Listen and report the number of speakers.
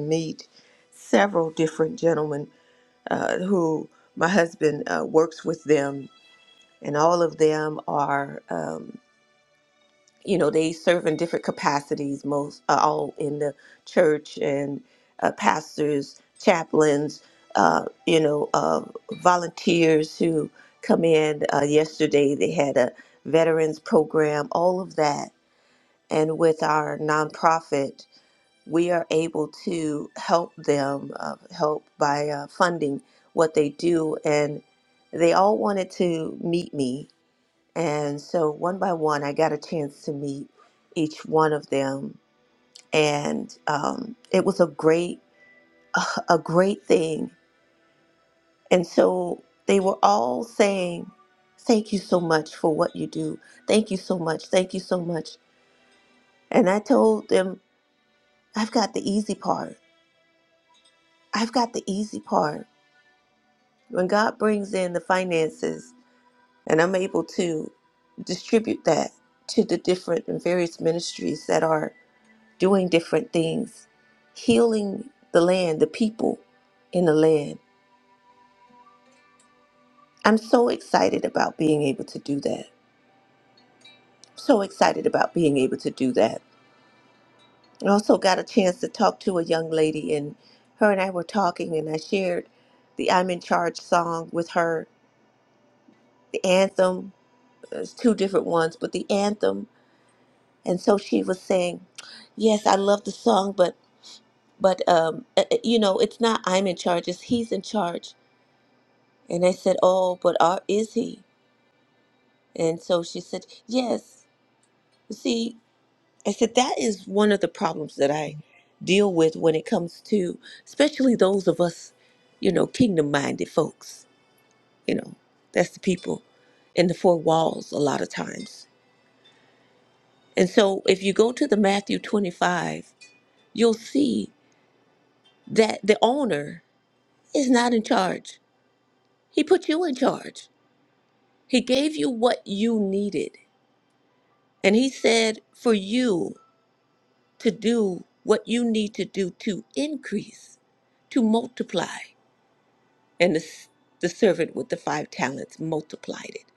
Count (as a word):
one